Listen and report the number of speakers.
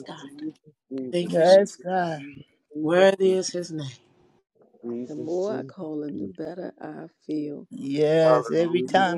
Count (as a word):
four